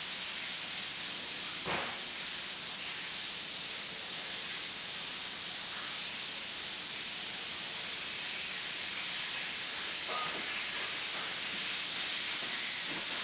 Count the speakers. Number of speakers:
zero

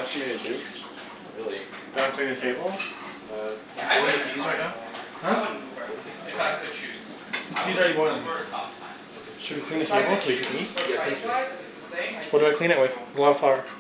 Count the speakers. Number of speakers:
four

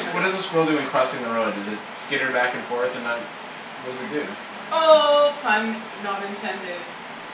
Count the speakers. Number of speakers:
two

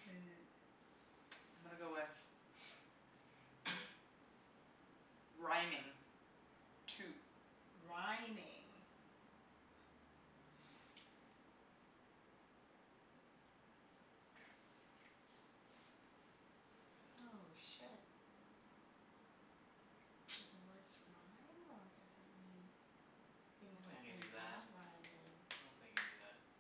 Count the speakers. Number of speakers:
three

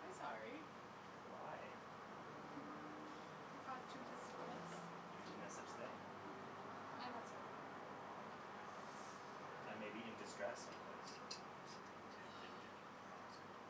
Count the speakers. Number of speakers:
two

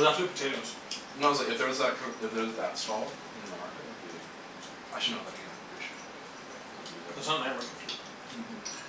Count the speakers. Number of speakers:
two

